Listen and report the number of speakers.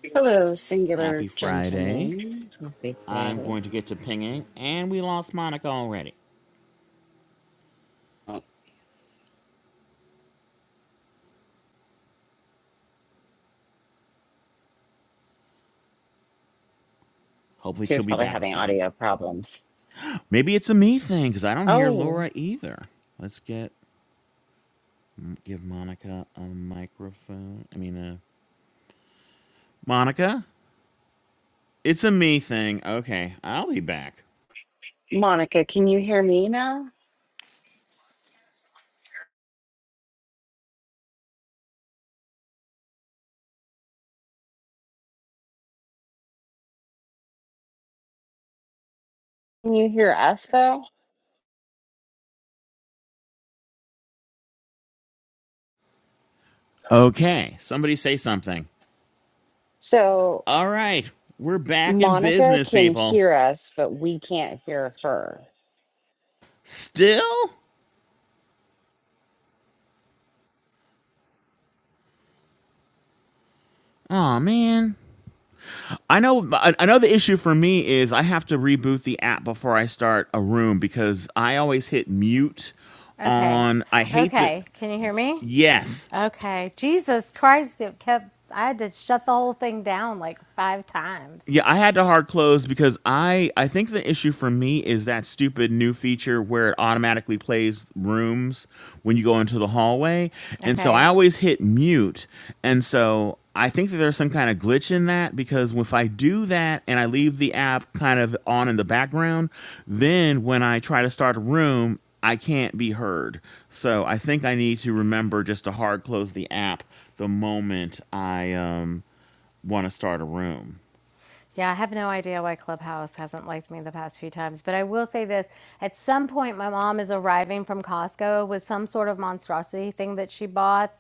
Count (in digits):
3